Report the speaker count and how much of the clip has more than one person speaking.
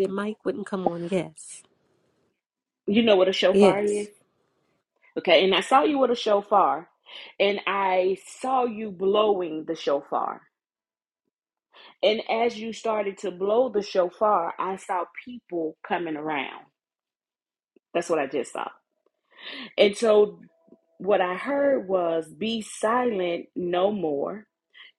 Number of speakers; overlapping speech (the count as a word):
two, about 1%